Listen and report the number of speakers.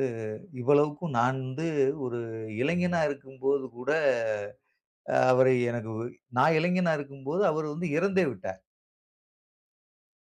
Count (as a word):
one